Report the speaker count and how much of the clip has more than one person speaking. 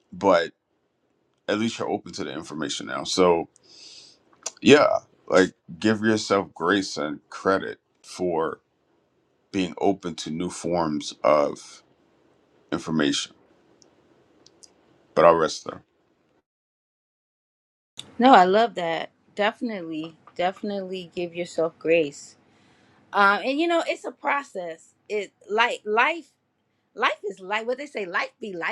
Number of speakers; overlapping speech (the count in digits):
2, no overlap